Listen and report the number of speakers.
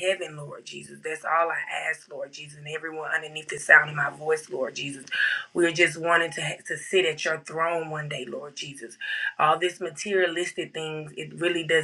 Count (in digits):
1